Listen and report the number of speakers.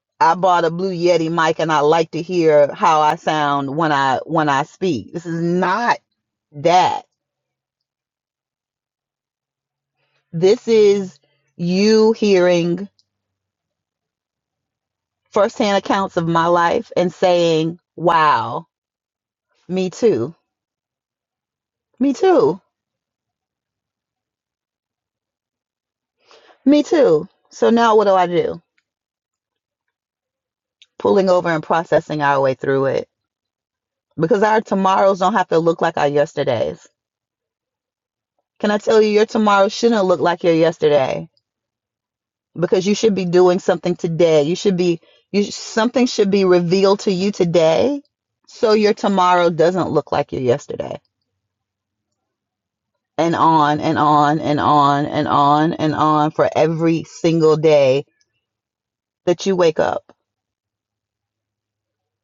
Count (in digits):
1